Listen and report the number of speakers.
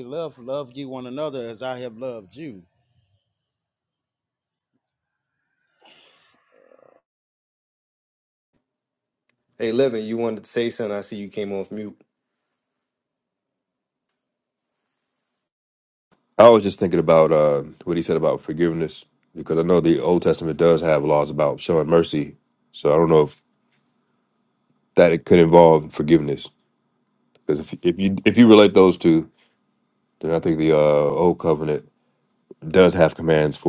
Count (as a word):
three